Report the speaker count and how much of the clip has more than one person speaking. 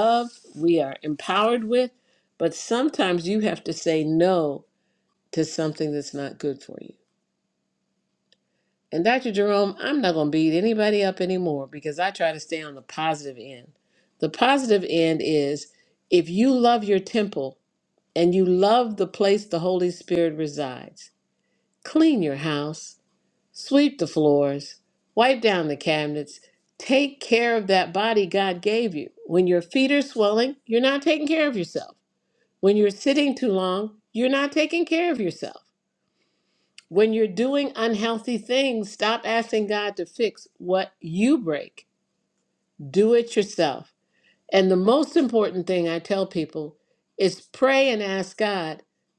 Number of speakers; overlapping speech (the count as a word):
one, no overlap